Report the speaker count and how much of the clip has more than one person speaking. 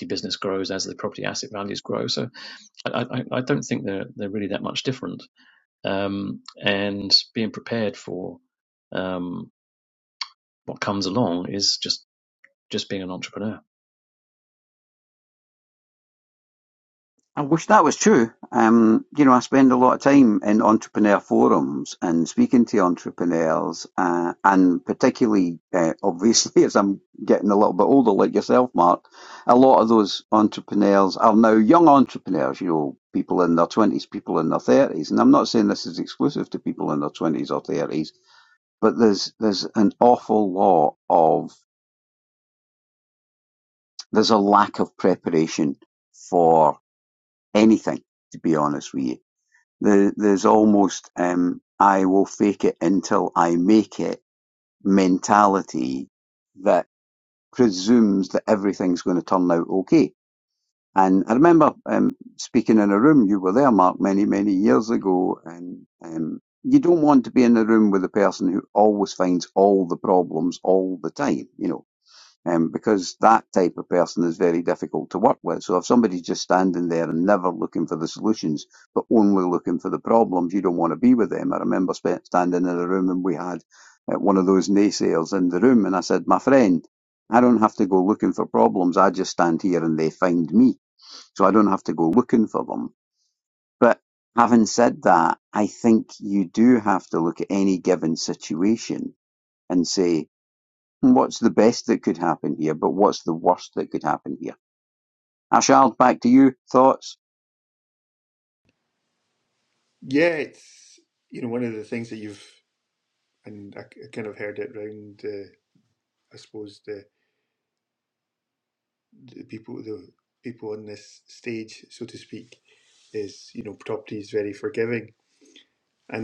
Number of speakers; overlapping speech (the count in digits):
3, no overlap